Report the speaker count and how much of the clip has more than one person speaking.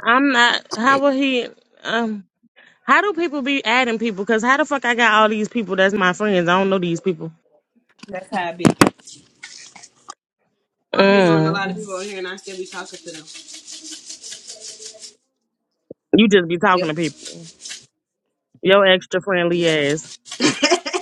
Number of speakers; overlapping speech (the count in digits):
2, about 5%